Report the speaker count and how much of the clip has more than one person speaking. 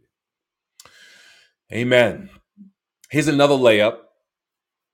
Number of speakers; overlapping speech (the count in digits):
1, no overlap